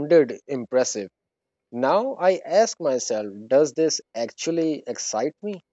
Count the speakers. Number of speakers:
one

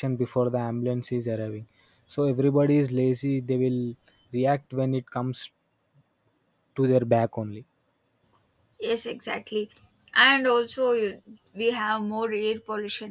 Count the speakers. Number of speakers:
two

